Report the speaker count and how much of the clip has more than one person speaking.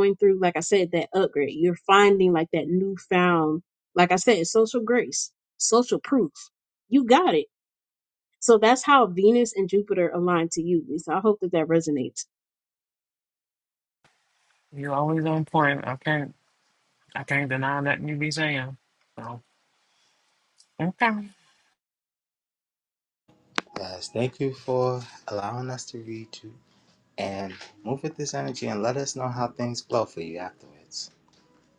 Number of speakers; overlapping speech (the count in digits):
3, no overlap